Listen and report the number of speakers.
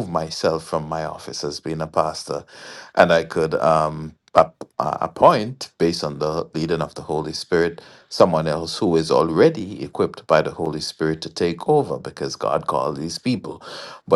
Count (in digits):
1